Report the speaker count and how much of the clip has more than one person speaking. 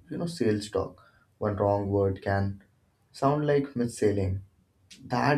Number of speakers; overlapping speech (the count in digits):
1, no overlap